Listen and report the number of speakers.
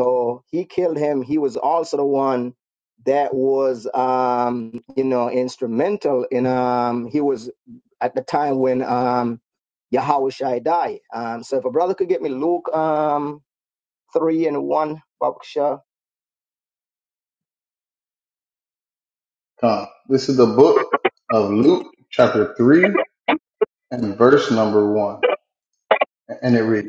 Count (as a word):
two